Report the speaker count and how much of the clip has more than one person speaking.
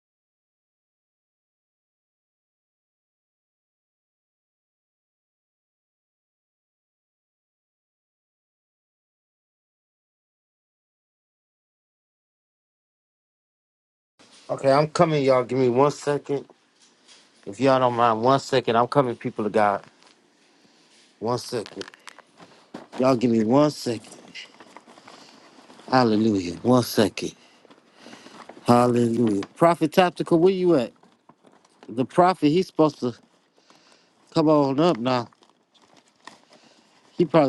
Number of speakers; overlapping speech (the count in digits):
1, no overlap